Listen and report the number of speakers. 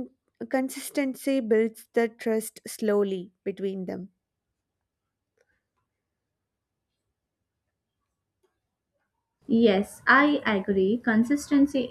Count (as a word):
two